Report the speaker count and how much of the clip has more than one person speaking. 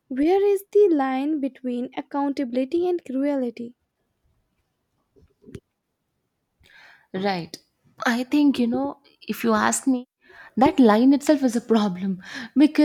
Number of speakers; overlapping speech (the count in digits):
2, no overlap